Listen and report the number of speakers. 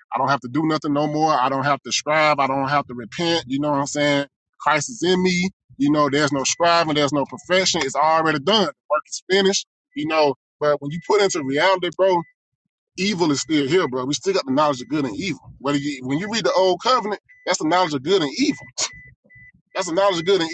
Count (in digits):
1